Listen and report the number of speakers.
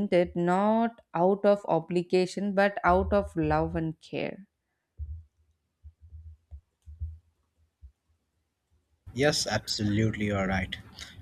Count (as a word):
two